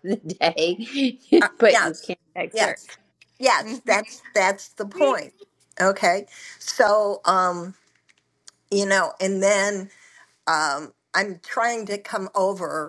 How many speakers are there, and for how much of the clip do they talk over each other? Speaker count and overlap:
two, about 4%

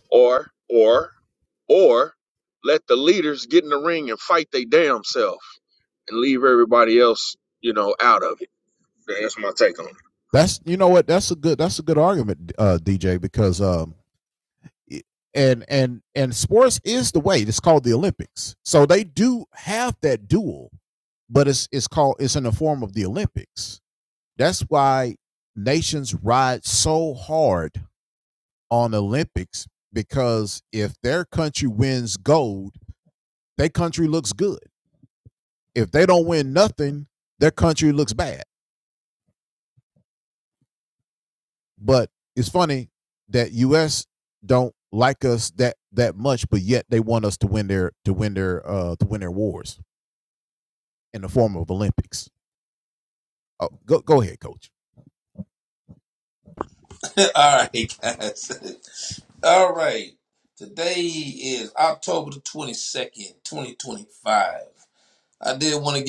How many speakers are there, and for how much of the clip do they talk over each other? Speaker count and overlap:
three, no overlap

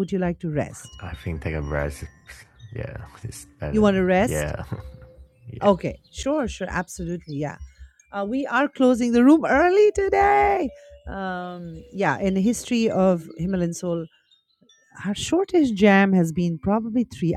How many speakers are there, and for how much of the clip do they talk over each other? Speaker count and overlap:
two, about 4%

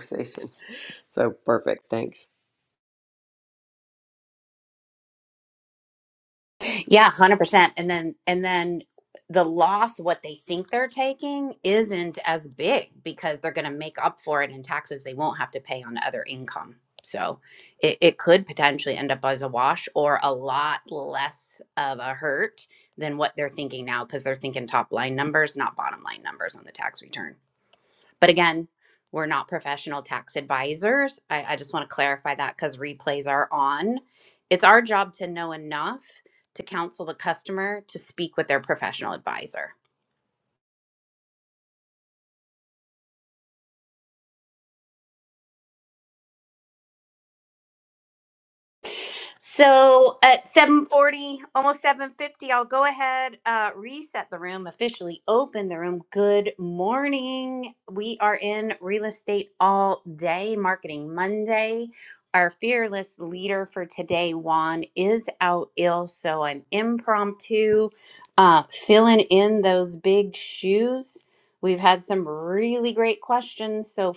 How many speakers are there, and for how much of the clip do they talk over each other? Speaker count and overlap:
two, no overlap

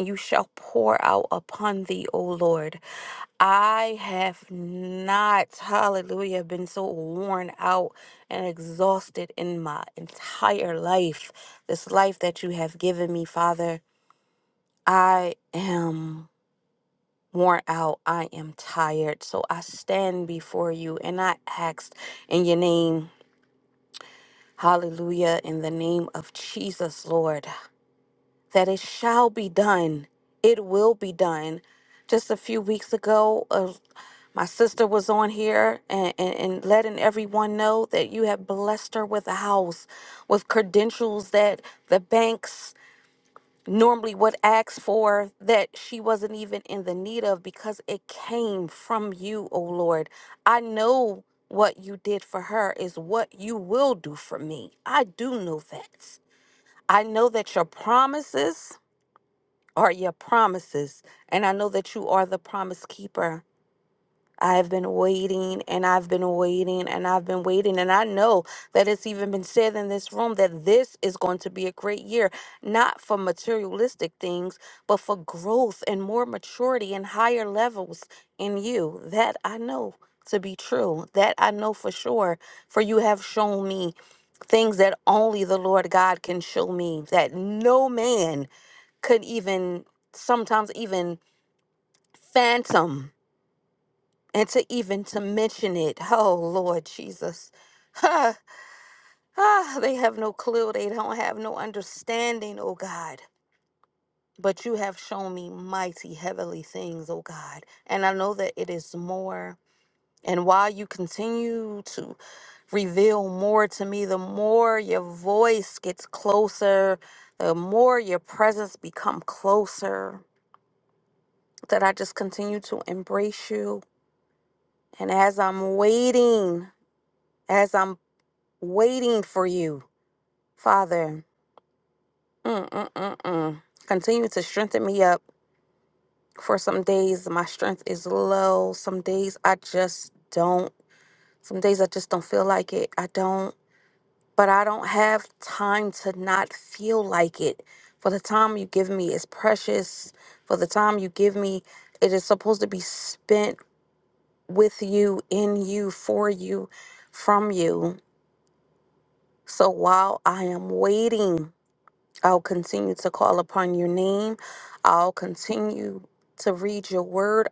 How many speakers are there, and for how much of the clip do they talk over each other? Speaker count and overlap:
one, no overlap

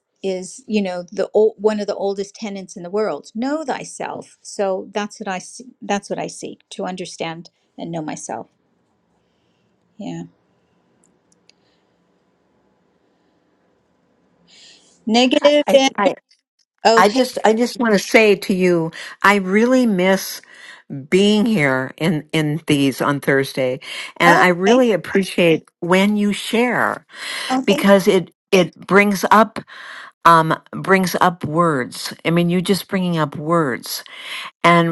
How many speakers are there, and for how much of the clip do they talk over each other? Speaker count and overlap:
two, about 4%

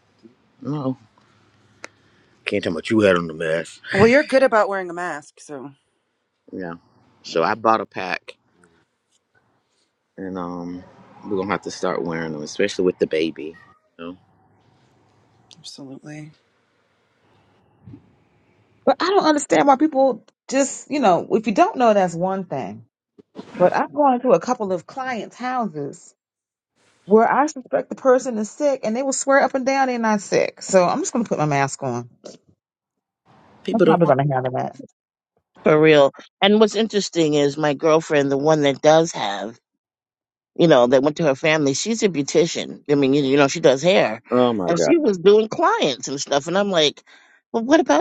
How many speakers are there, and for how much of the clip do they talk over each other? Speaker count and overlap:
four, about 2%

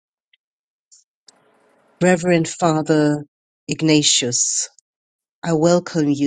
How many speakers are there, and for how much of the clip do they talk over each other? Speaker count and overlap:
one, no overlap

